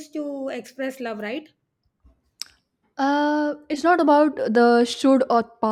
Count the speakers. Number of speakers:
2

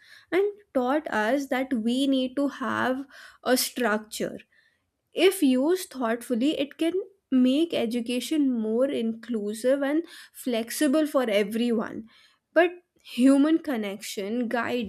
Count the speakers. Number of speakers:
1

